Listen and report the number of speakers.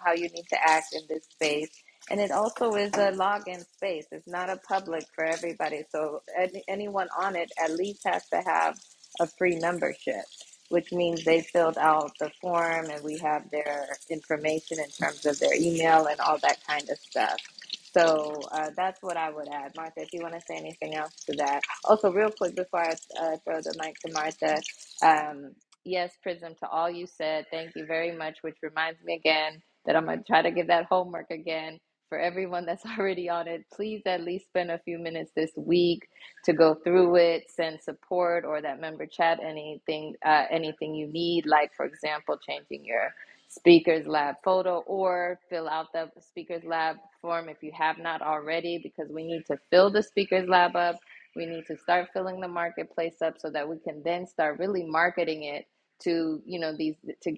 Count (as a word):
one